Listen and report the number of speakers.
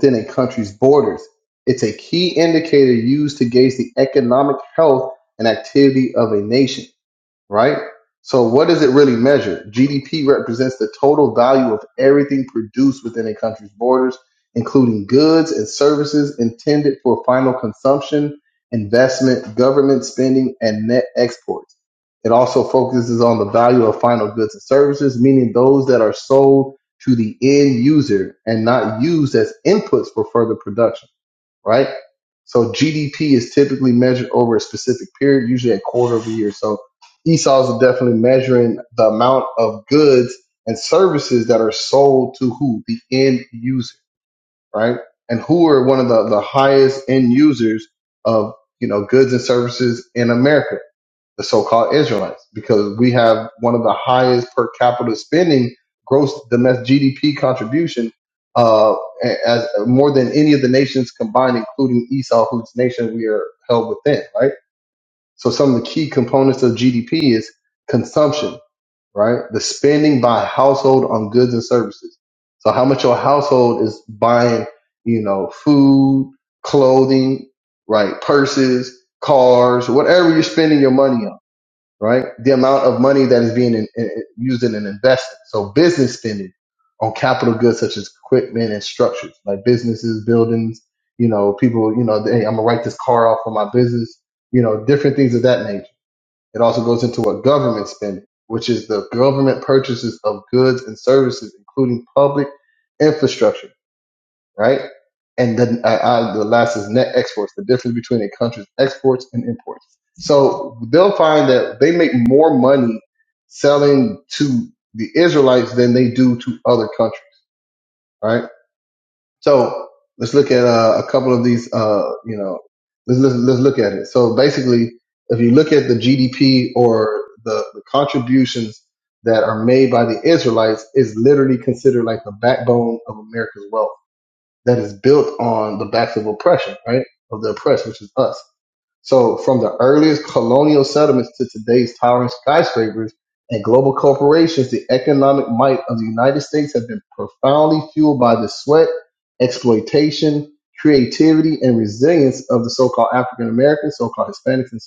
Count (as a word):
one